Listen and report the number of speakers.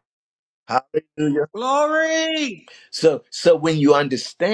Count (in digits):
2